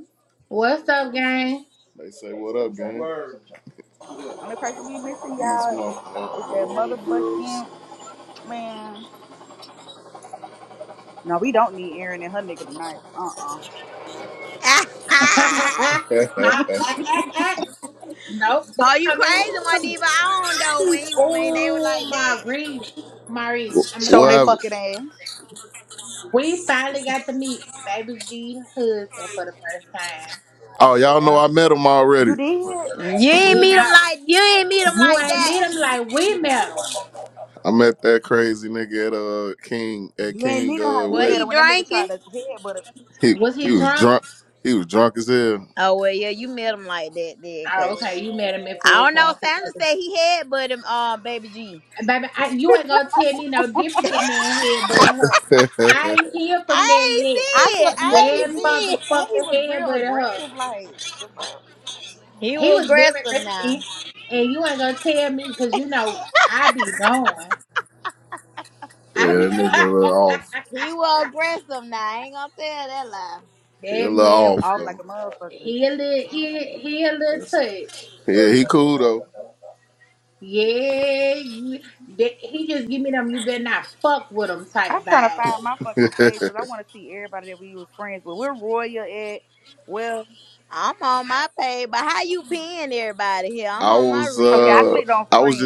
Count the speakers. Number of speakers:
four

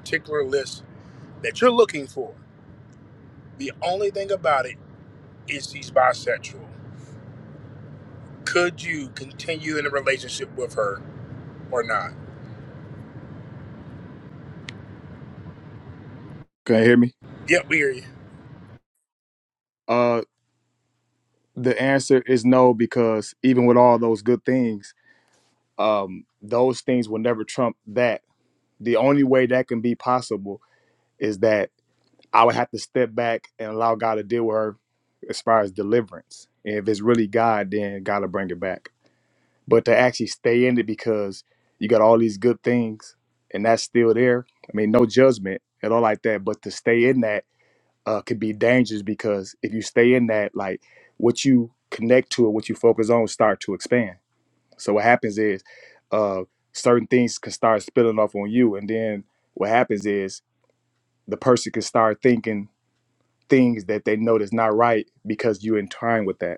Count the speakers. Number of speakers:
two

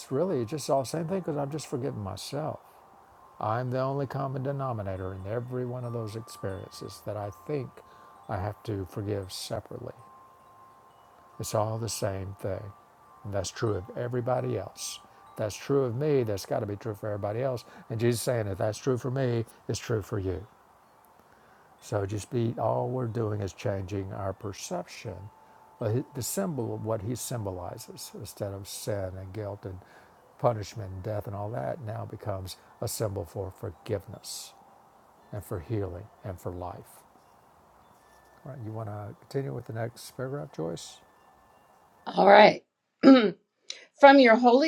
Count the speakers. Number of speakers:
two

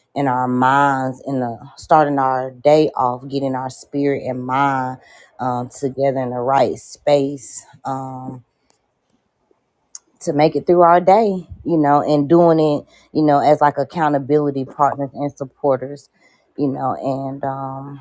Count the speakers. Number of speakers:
one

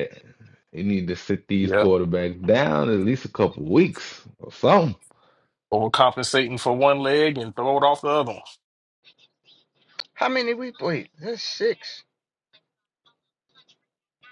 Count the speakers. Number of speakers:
three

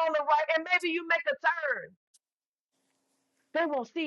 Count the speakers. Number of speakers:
one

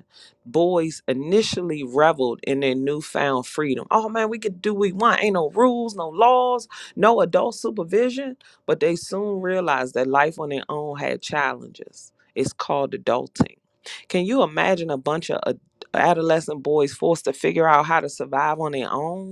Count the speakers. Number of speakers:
one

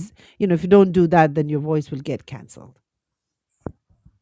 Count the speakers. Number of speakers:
one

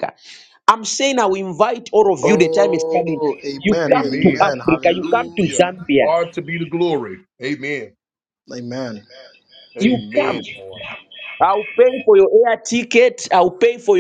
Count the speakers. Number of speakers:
three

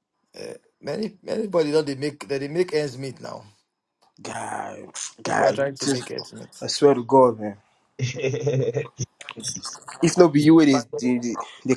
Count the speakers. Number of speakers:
three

